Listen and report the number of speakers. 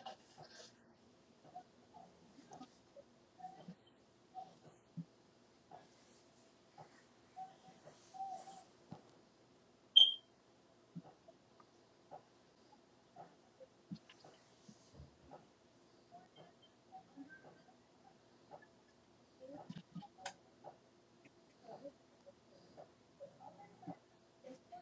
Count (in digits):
0